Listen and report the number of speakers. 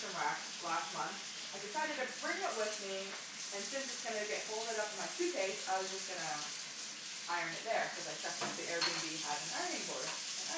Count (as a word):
one